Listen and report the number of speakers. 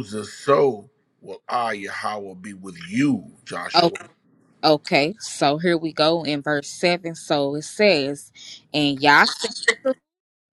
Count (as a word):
two